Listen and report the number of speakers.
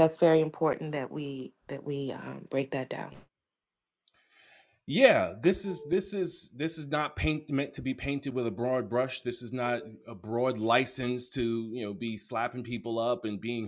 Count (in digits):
2